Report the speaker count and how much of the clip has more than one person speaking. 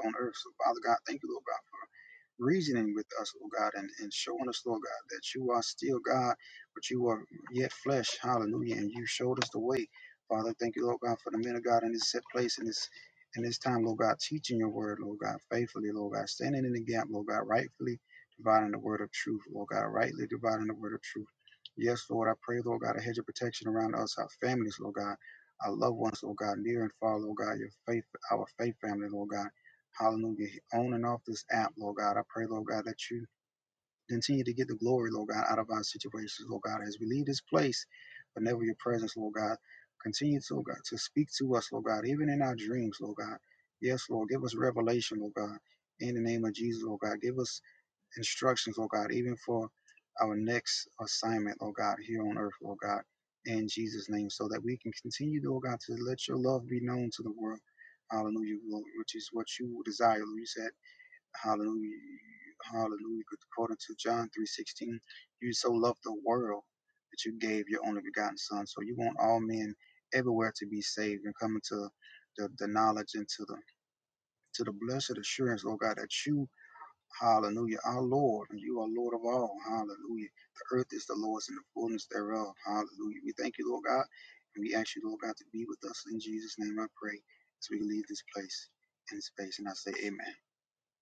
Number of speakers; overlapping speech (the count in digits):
1, no overlap